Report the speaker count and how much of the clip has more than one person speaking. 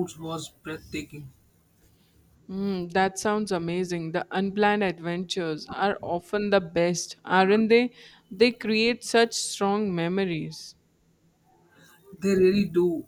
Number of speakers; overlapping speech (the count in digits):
2, no overlap